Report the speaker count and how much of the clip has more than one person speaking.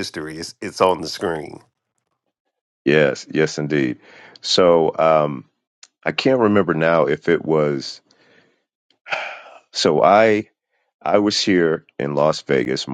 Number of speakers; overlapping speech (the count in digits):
2, no overlap